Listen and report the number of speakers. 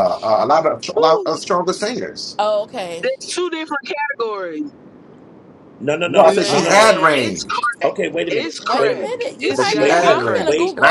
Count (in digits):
4